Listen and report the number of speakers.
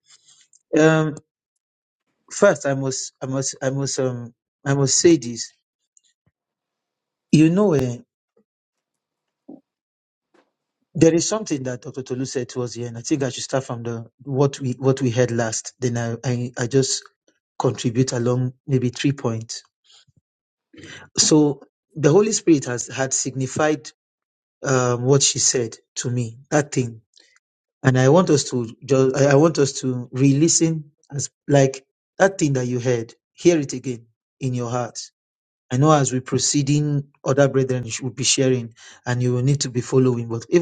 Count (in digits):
1